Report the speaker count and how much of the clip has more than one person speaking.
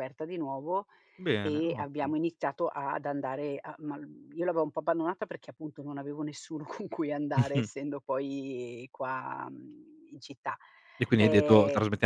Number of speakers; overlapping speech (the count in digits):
2, about 11%